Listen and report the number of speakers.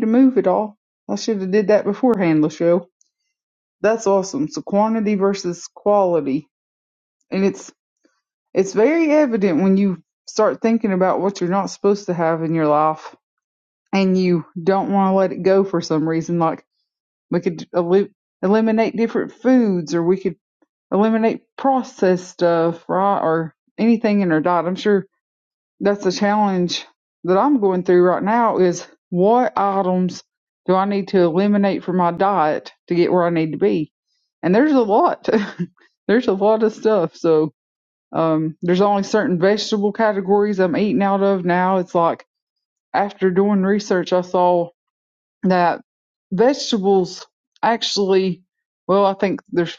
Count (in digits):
1